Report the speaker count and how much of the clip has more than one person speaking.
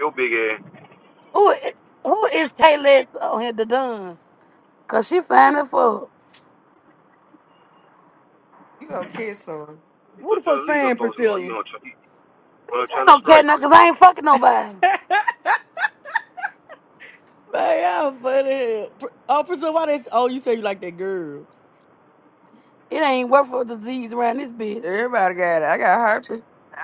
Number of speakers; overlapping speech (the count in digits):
4, about 8%